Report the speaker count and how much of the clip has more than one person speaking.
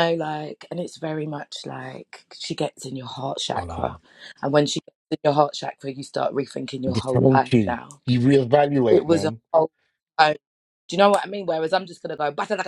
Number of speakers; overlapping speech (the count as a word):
two, about 14%